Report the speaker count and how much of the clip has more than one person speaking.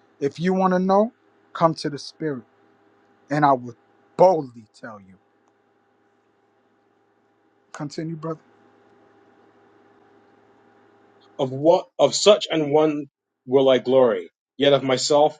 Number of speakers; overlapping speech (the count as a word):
two, no overlap